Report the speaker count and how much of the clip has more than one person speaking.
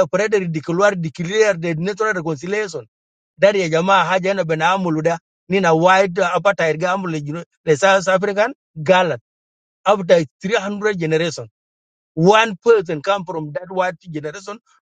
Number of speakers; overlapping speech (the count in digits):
1, no overlap